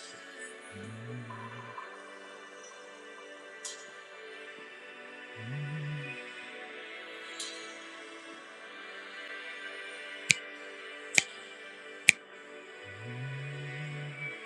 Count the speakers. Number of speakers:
zero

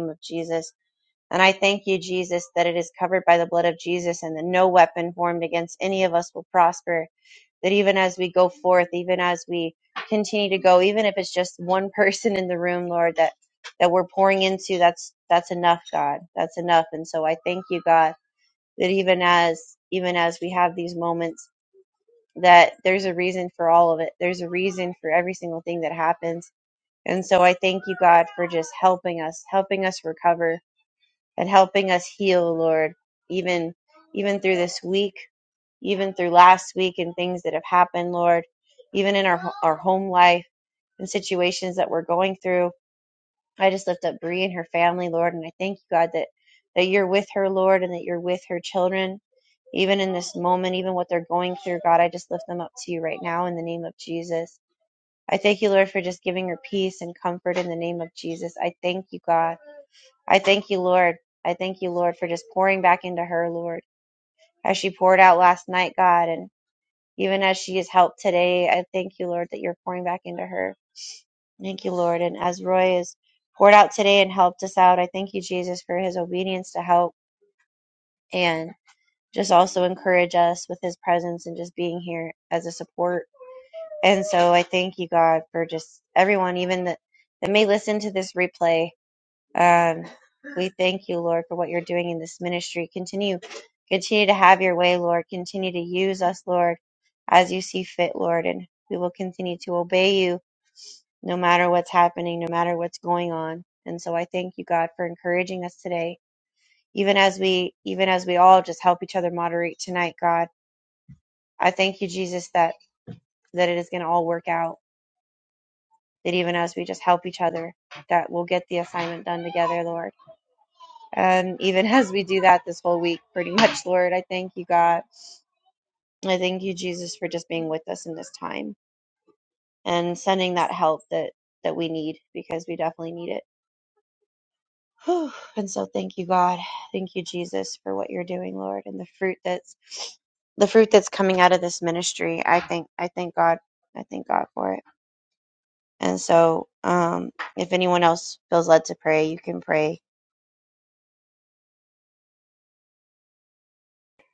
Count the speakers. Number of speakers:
one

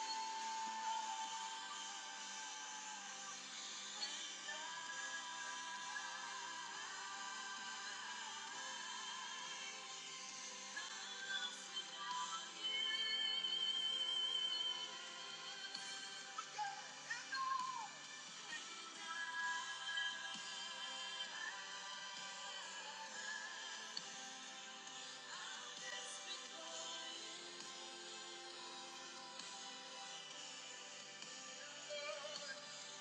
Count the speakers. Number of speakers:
zero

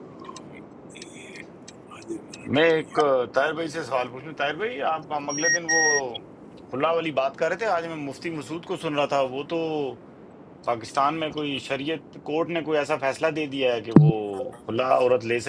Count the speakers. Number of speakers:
two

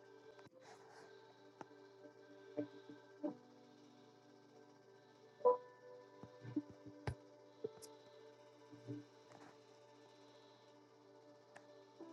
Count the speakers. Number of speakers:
zero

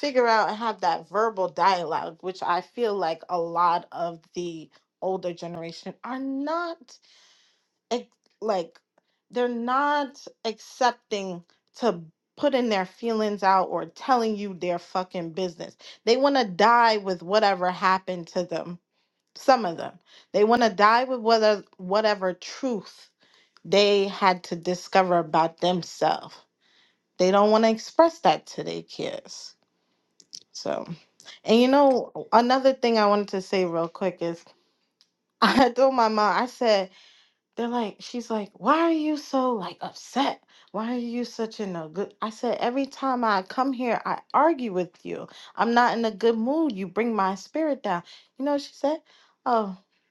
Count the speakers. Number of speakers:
one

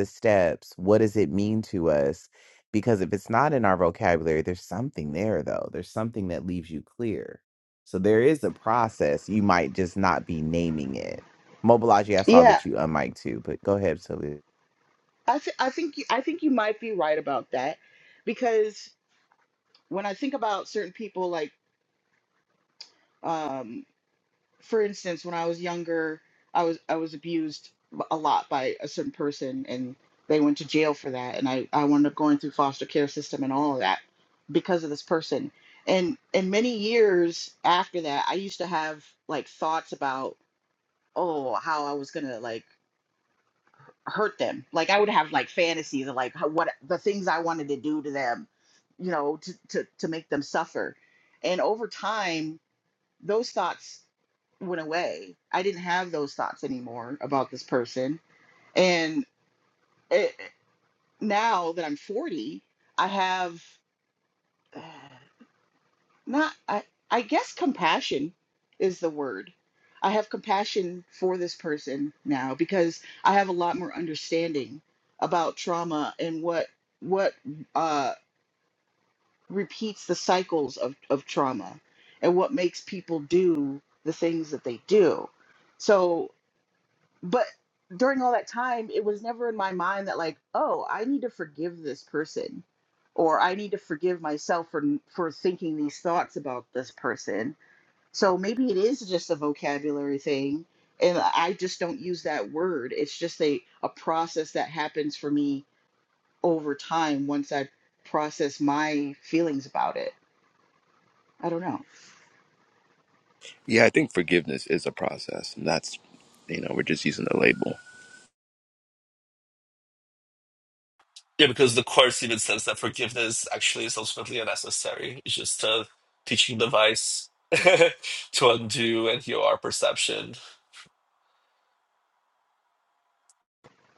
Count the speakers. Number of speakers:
four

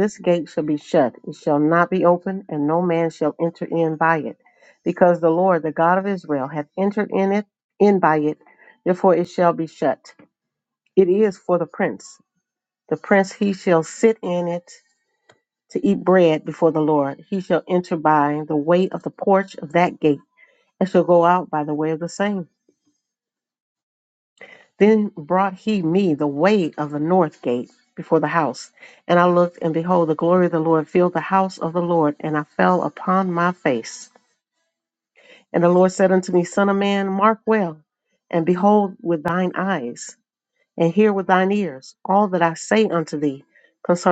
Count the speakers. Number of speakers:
one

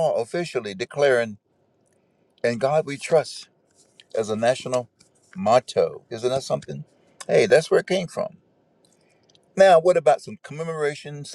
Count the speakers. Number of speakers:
one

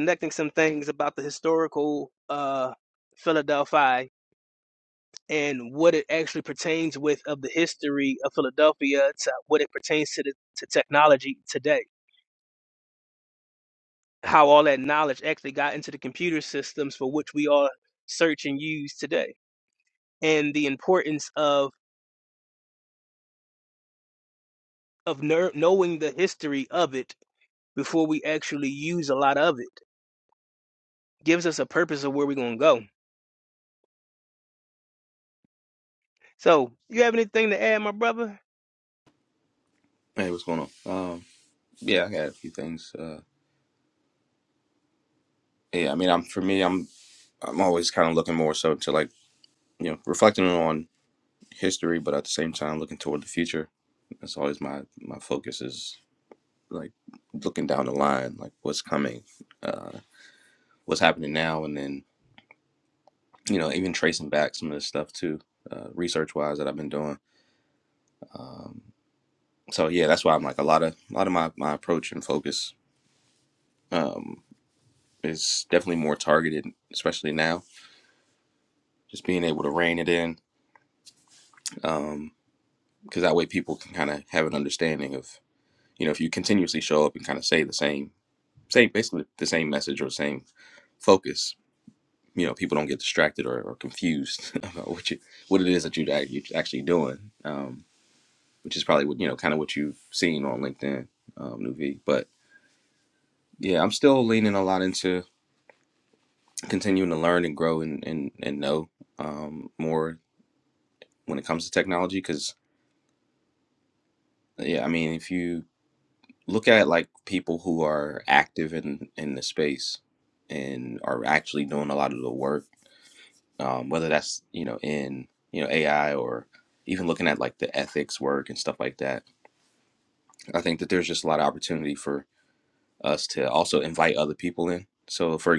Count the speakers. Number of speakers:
two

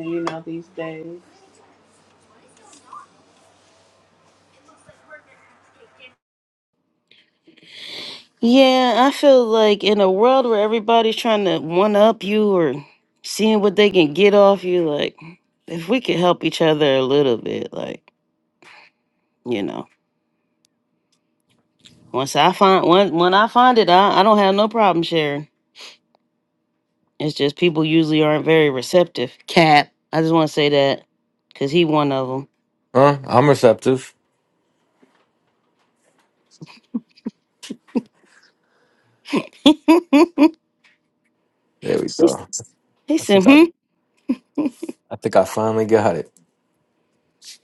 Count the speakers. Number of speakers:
three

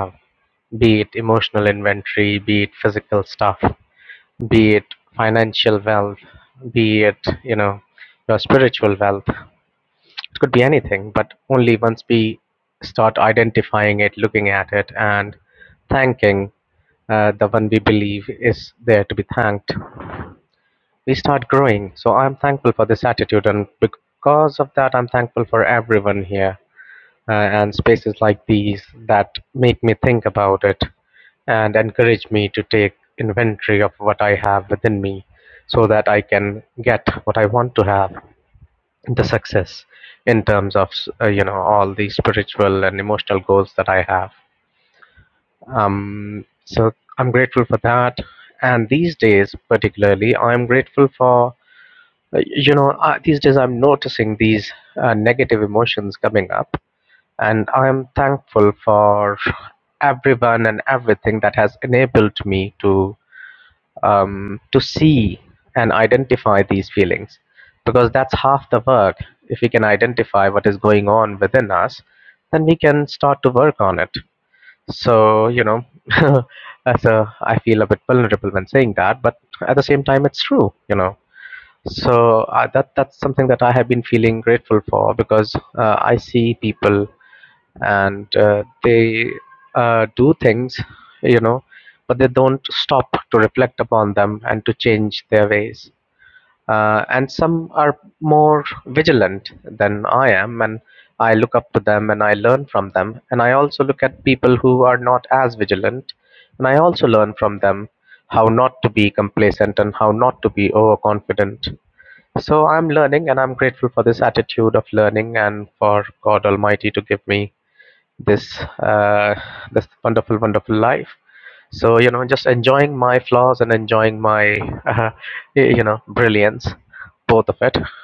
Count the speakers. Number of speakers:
one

